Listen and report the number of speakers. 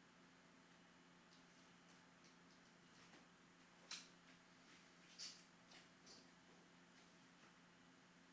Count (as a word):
zero